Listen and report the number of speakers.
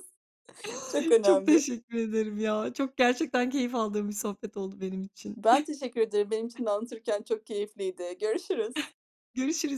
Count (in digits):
2